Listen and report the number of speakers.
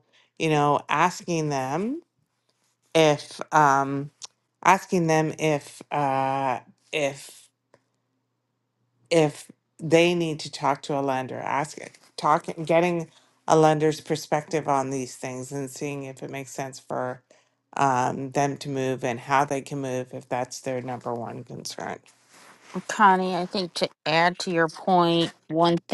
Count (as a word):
two